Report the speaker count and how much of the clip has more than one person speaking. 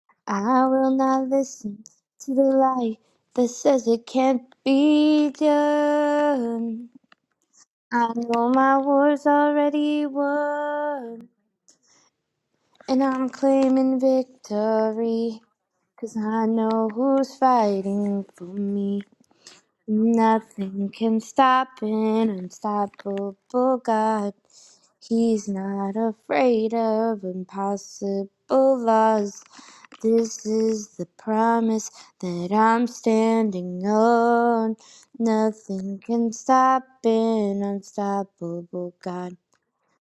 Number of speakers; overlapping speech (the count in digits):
1, no overlap